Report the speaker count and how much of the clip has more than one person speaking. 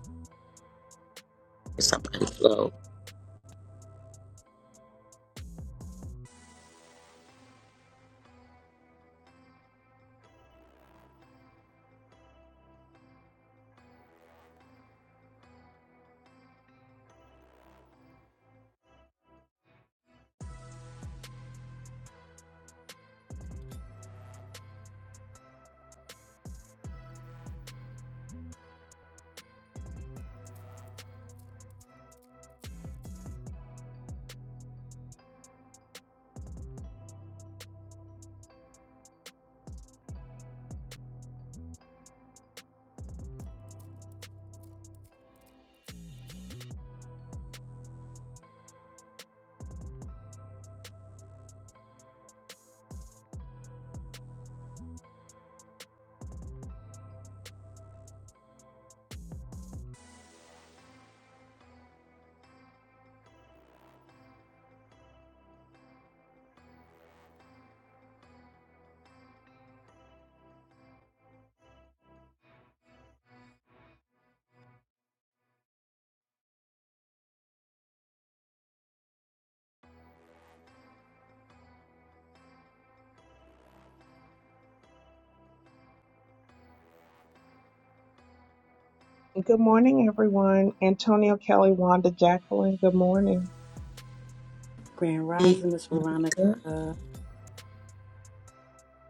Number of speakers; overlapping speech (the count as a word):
three, under 1%